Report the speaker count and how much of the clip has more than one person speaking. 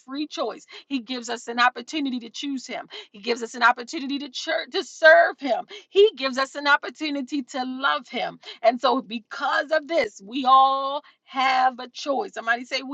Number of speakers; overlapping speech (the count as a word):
one, no overlap